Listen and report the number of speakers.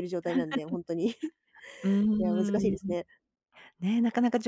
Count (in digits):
2